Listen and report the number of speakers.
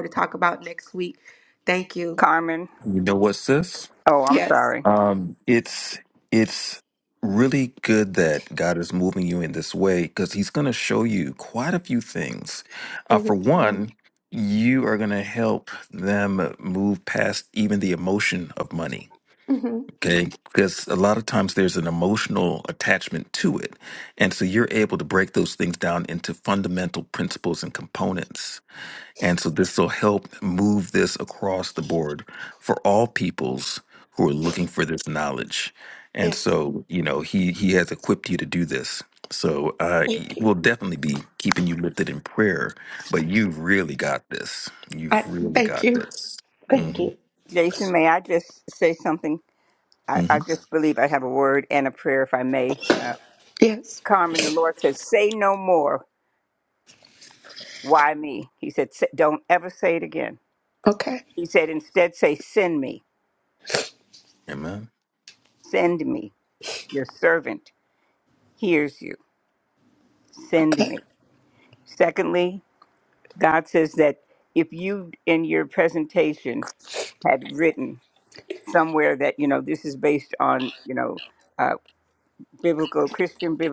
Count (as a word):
three